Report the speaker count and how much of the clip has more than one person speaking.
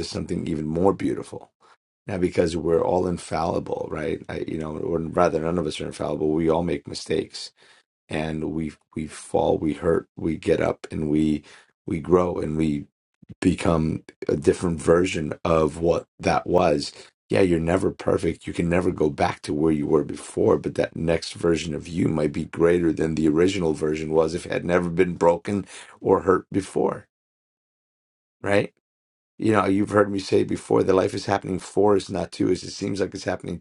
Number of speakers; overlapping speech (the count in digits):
1, no overlap